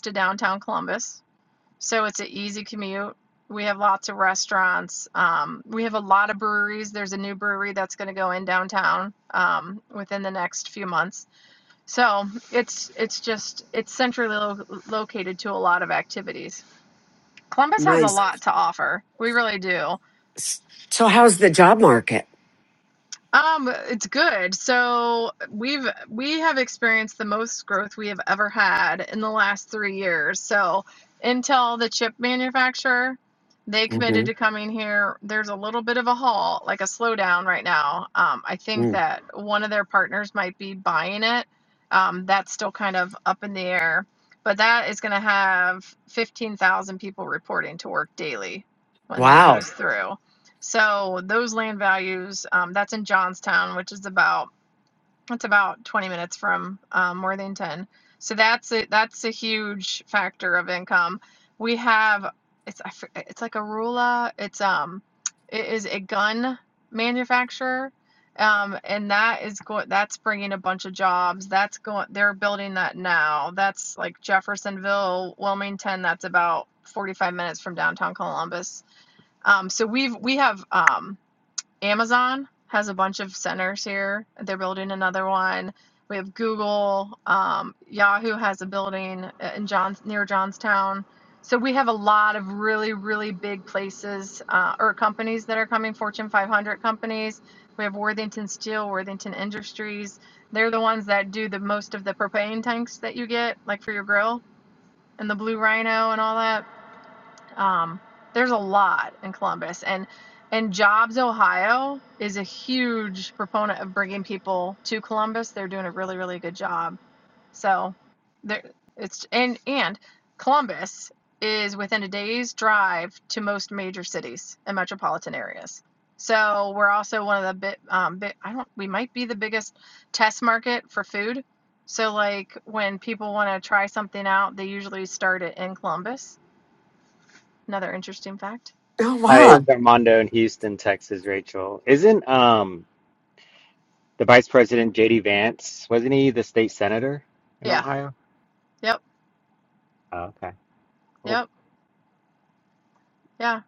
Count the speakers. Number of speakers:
3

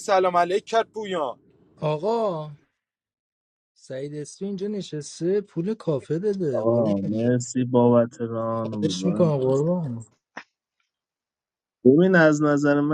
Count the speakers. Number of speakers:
3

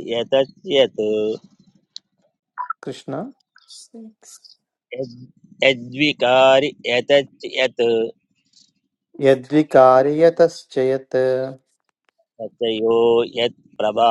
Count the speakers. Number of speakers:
2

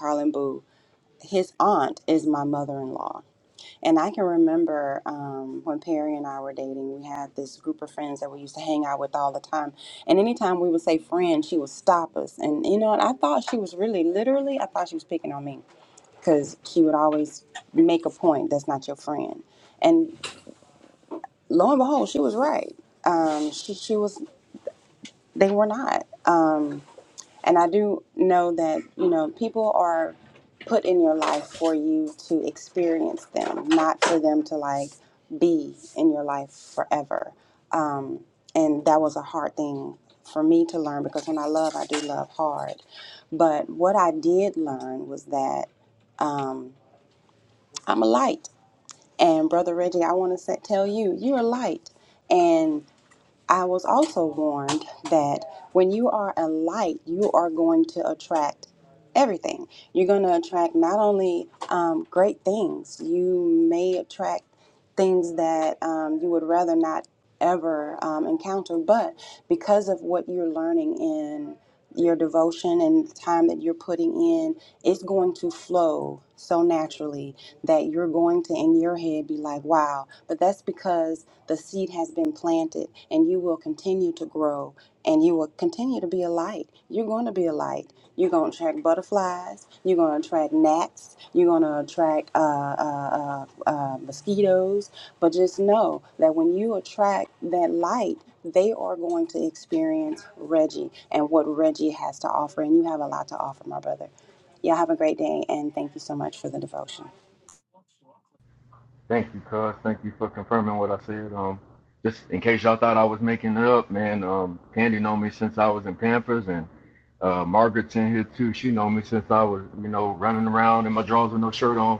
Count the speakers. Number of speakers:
2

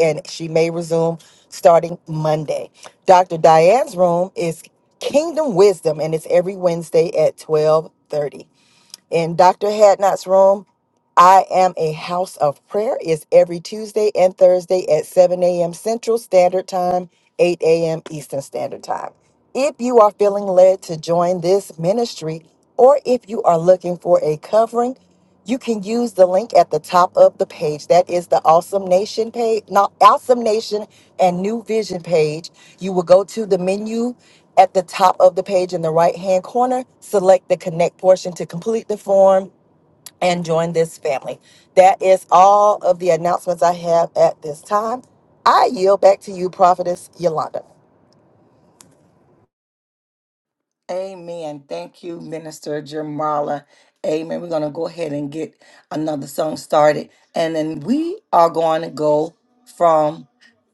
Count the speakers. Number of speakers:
2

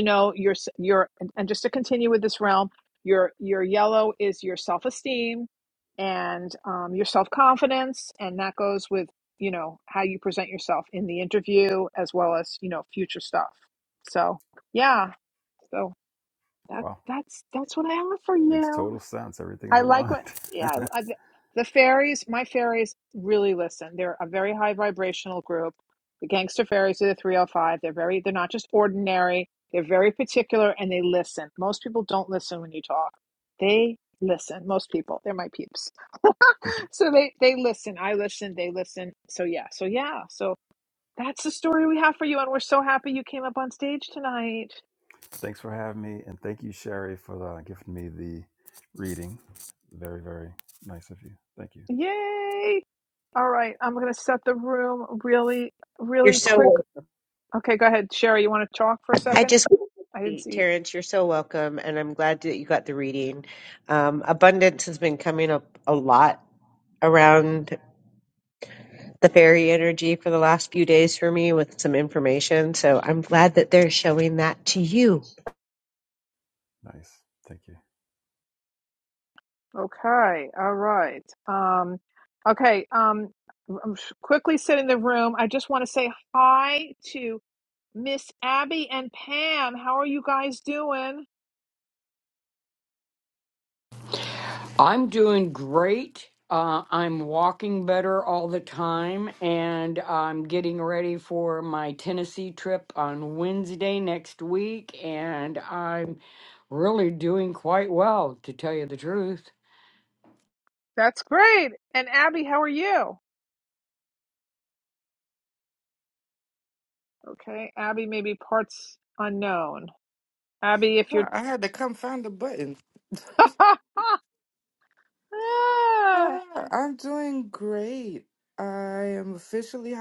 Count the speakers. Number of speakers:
5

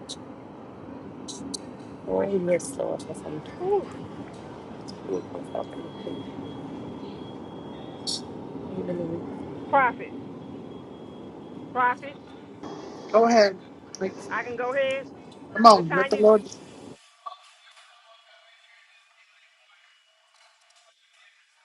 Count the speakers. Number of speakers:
3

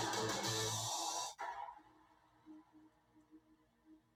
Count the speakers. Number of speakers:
0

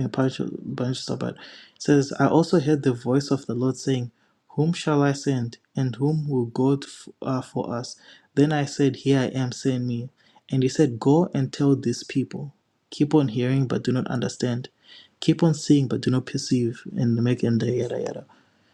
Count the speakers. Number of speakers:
1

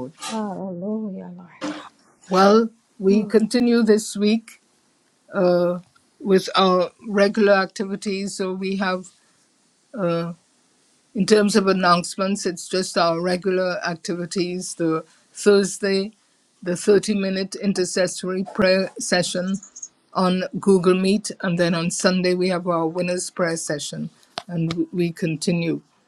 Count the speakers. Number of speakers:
2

